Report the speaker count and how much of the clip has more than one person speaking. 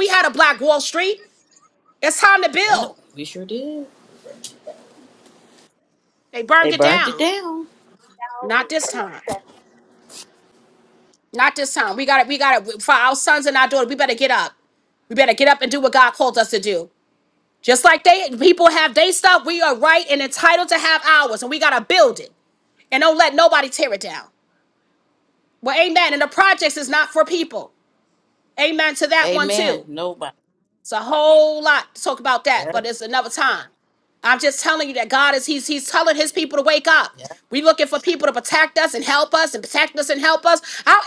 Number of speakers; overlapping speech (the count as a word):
two, about 4%